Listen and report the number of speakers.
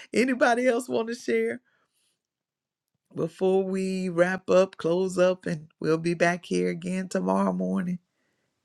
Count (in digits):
1